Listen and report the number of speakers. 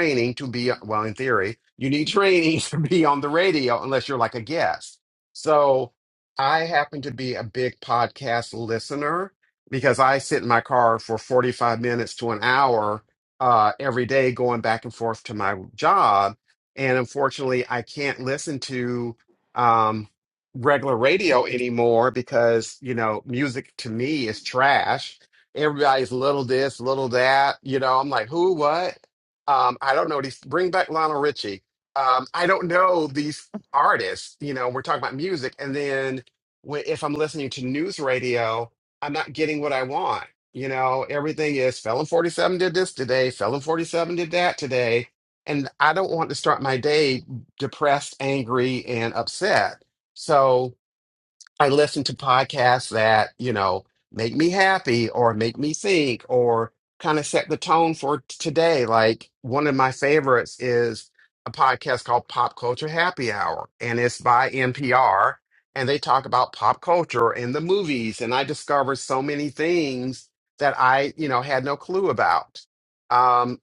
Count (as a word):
one